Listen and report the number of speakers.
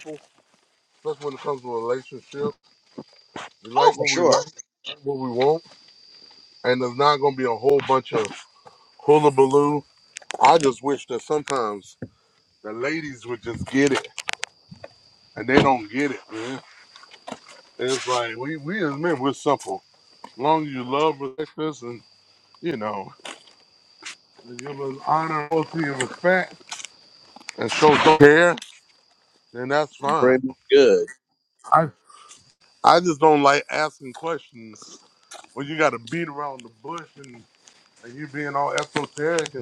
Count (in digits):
2